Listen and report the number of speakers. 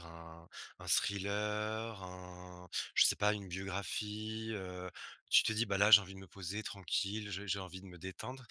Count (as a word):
one